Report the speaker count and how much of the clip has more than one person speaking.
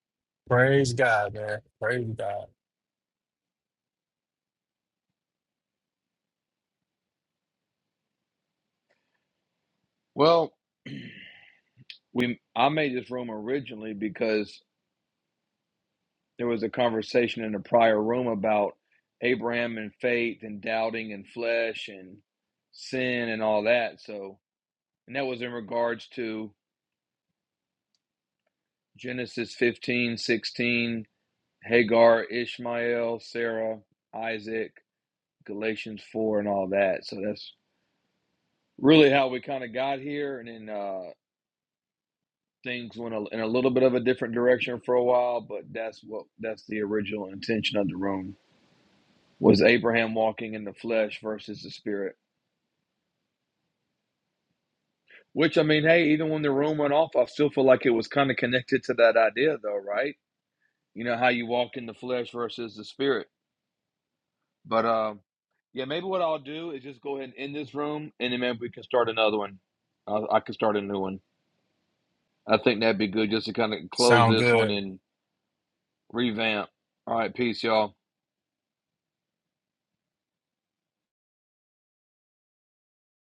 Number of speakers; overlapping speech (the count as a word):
two, about 1%